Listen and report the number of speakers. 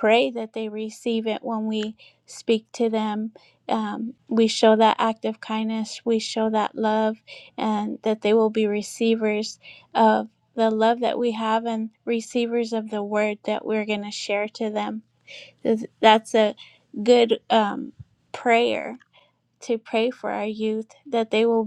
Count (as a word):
one